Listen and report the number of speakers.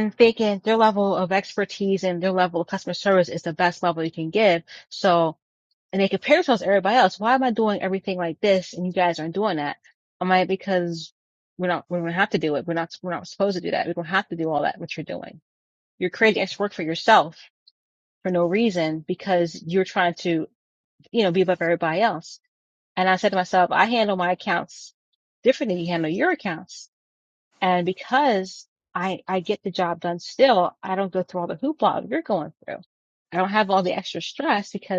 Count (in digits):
1